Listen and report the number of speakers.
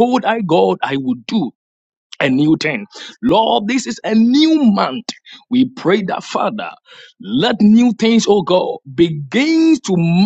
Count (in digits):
1